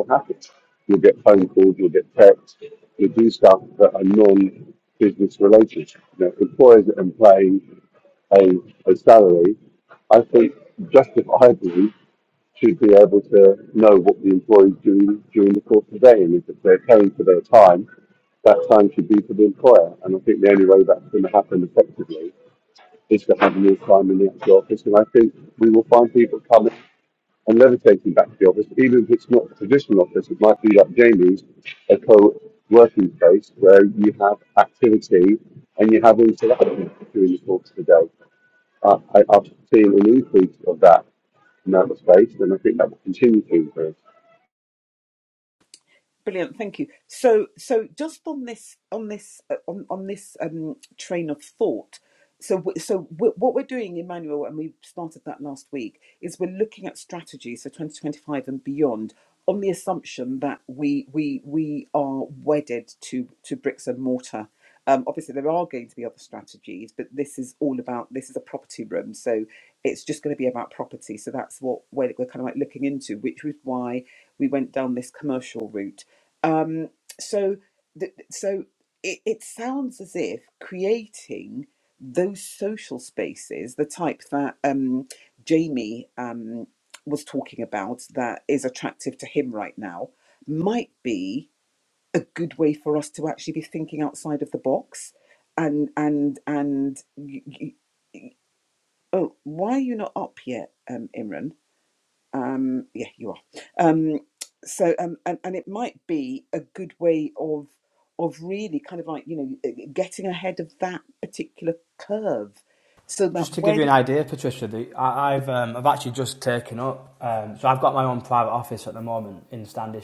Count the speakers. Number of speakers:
3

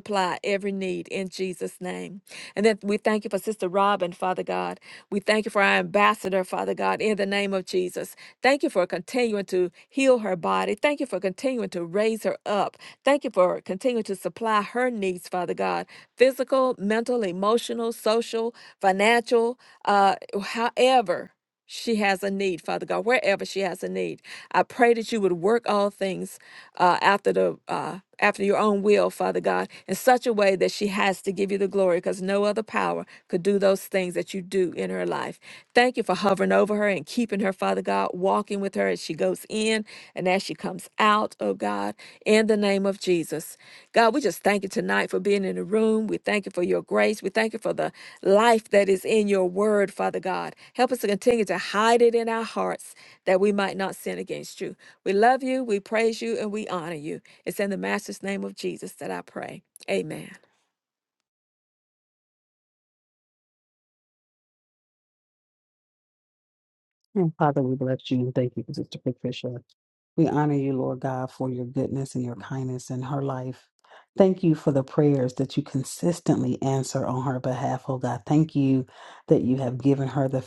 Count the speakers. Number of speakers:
2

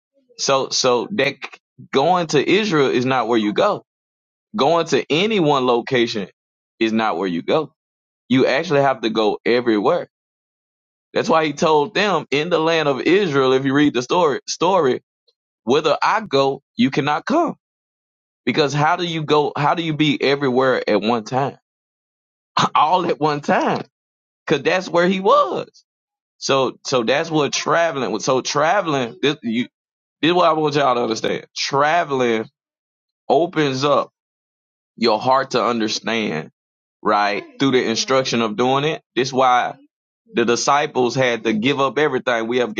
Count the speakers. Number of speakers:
1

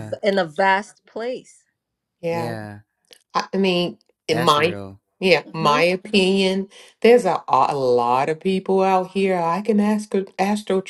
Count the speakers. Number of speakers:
3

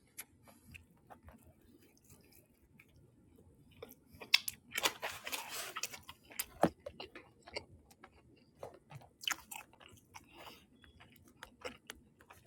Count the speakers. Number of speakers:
0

